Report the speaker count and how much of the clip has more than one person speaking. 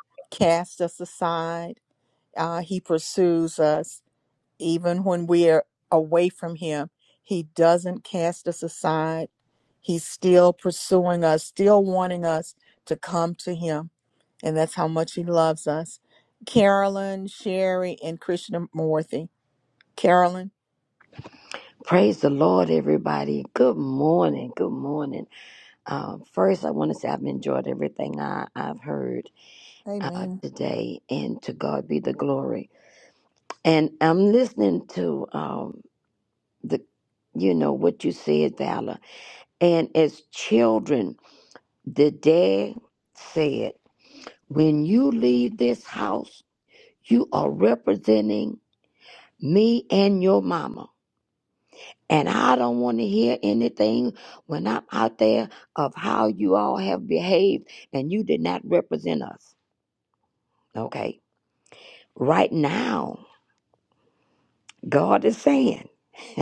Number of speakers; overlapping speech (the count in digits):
2, about 1%